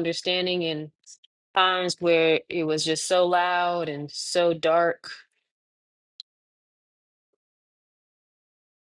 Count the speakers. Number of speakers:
1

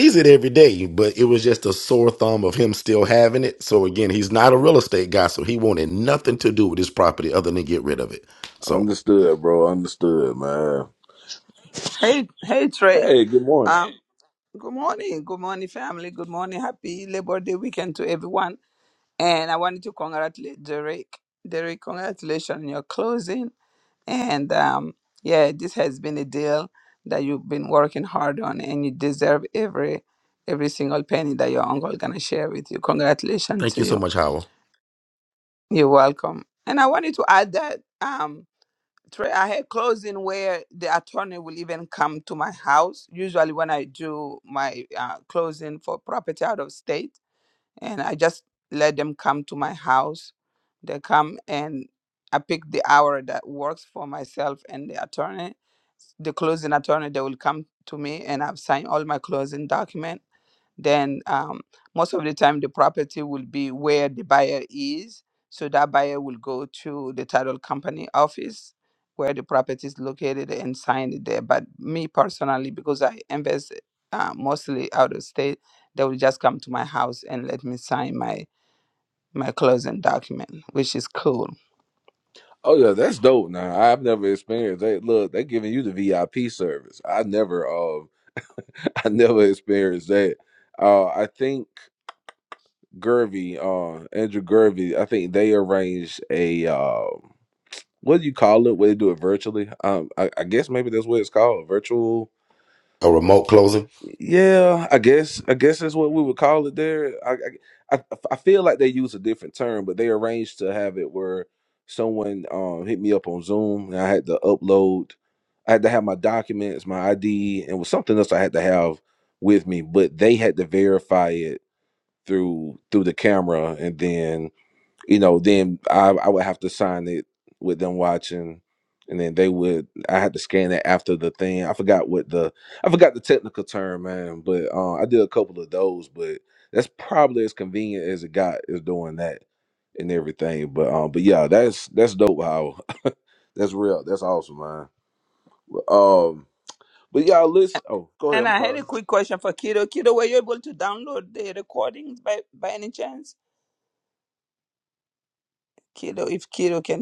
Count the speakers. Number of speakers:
3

